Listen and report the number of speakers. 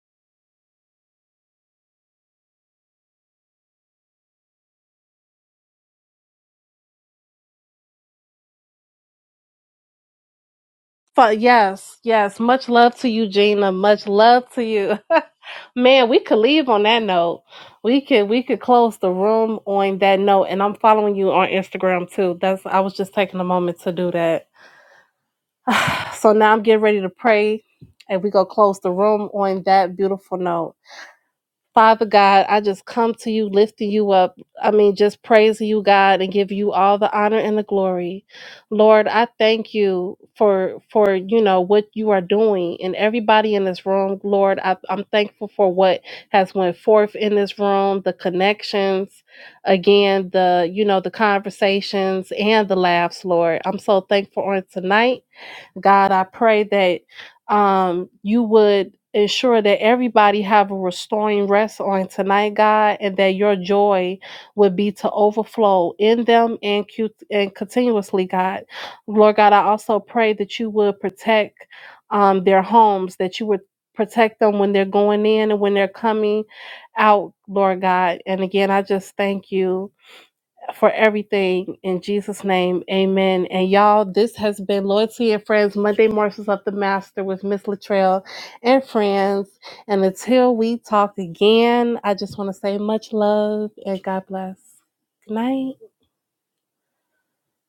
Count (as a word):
one